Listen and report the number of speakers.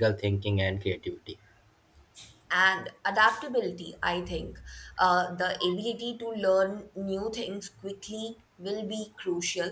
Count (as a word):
two